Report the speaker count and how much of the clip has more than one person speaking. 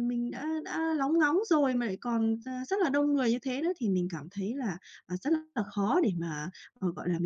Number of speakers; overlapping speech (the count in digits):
1, no overlap